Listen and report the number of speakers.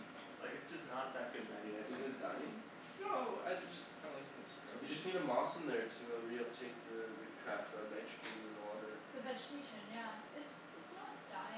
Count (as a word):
four